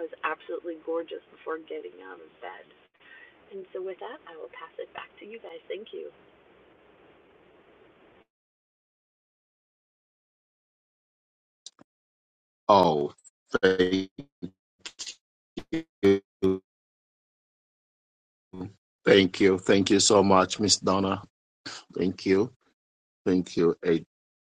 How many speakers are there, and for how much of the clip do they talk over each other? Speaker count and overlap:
2, no overlap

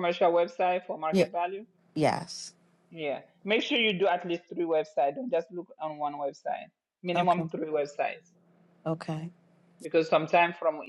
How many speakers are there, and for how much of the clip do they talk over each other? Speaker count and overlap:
2, about 5%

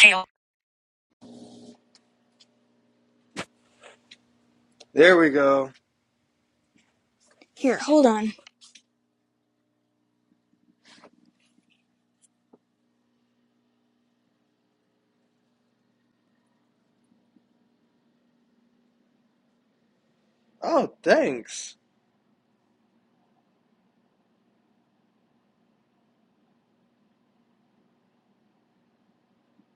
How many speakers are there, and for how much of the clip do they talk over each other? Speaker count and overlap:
2, no overlap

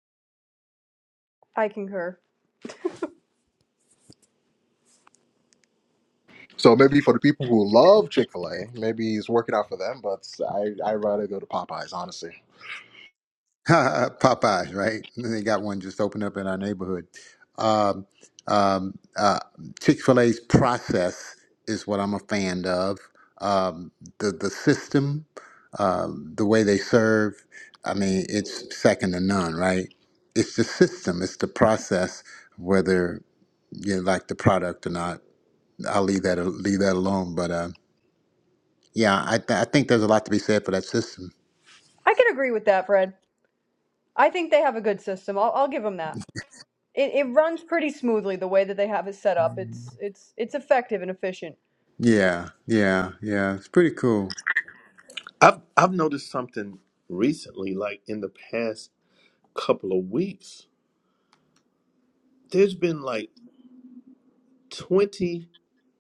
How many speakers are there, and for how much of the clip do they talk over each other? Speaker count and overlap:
4, no overlap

